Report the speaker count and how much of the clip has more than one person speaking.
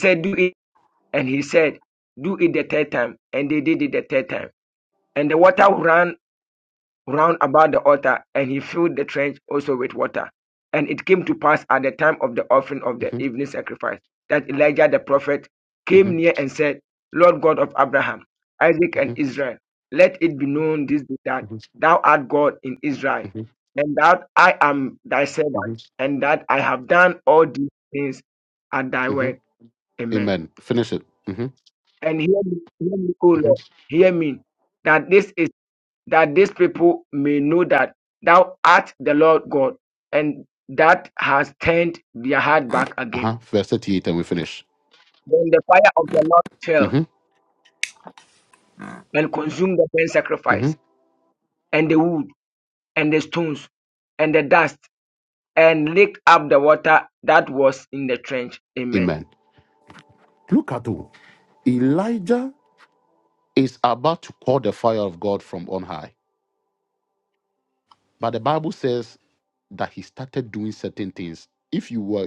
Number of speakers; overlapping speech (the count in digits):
2, about 3%